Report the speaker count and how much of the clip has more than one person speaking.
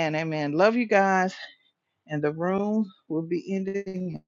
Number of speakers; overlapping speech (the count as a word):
one, no overlap